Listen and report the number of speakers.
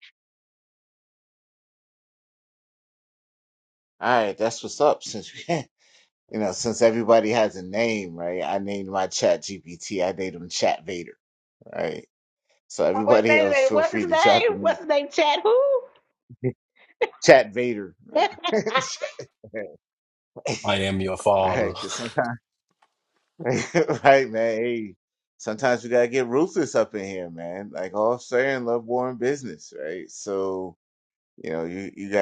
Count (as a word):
three